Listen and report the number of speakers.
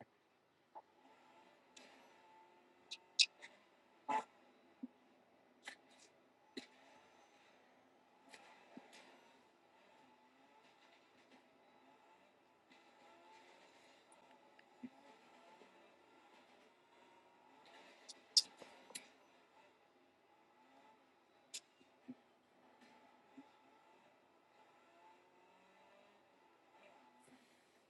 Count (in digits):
0